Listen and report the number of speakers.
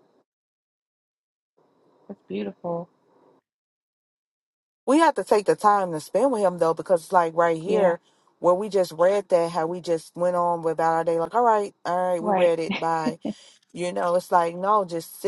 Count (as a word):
two